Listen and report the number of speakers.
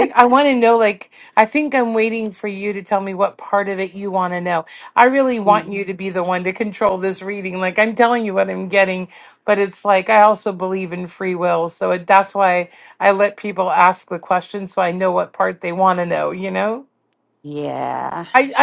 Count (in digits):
2